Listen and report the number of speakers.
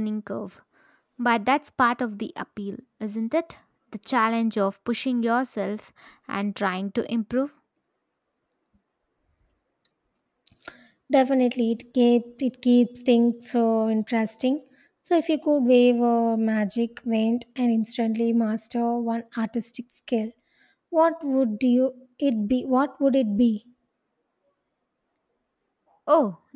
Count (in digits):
2